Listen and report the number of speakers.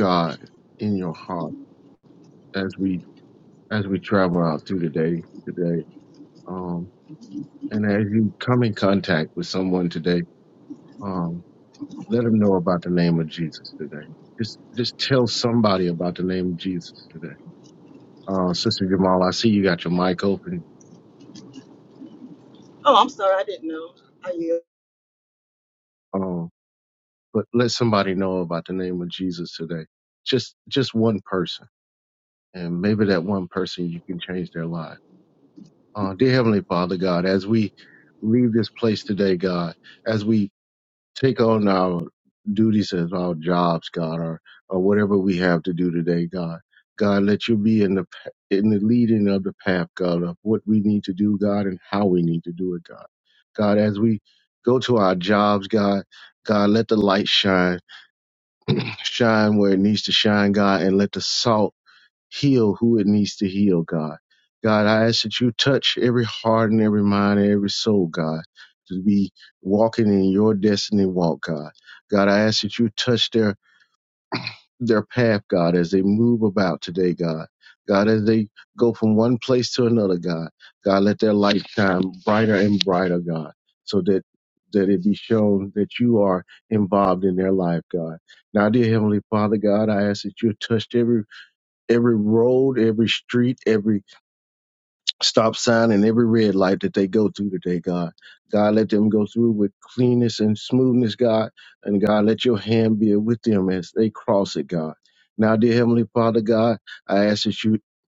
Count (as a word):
two